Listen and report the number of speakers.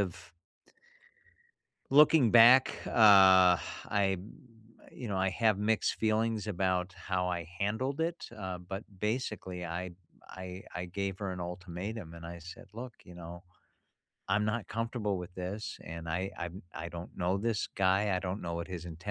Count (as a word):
one